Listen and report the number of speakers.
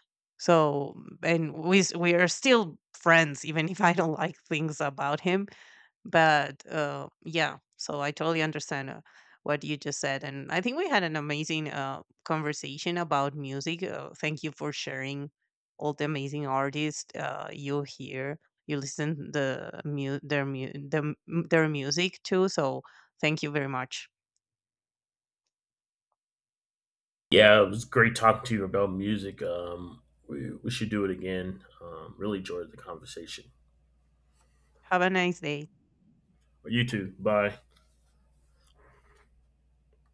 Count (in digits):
2